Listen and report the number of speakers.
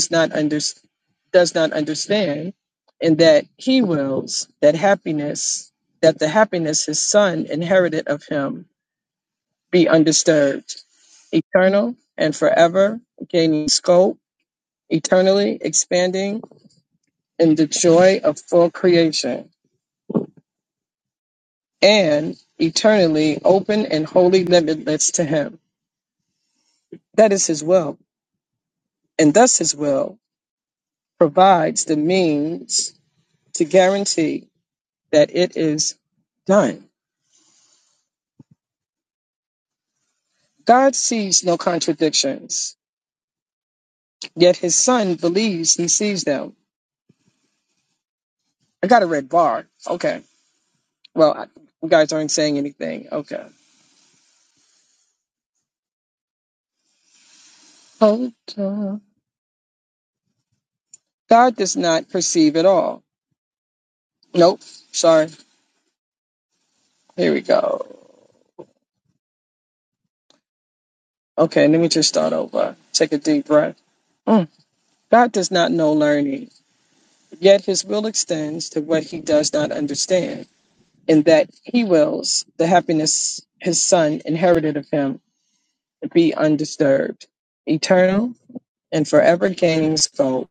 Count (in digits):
1